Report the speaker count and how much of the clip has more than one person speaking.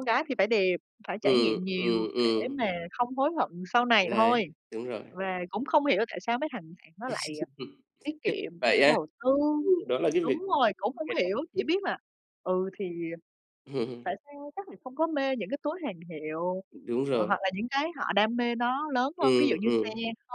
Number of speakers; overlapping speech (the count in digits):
2, about 18%